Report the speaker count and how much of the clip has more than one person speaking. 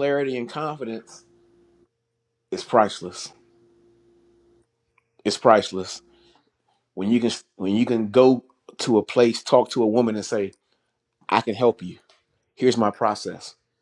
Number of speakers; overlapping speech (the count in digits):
1, no overlap